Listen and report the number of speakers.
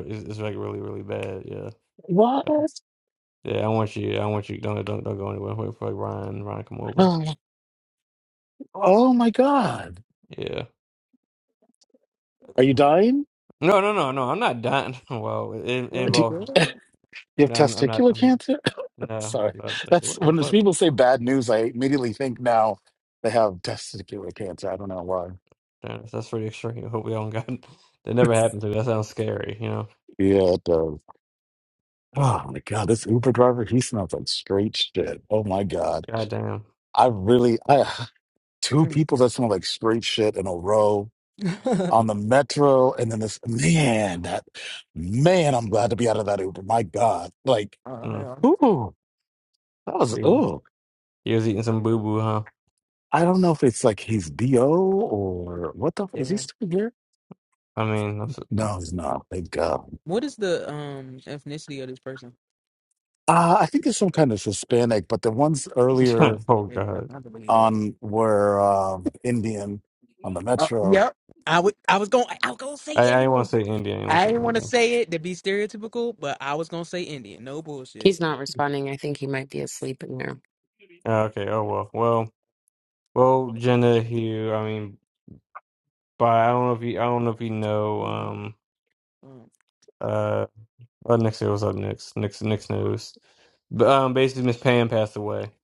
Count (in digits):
4